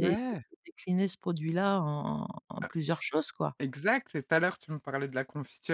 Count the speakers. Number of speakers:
2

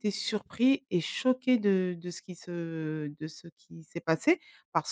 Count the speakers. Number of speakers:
1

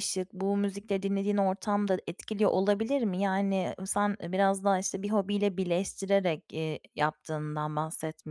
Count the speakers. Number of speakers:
1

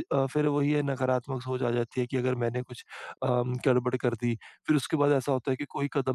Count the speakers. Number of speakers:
1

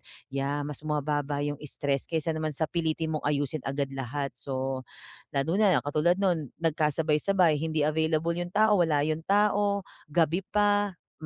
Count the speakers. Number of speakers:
1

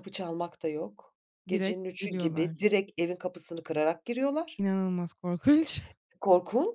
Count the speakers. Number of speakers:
2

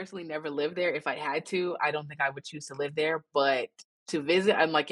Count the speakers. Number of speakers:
1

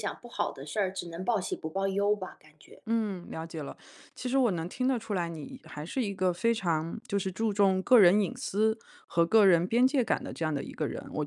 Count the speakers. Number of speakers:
2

